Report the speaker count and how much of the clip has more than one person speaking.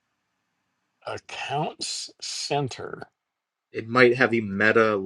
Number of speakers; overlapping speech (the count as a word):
two, no overlap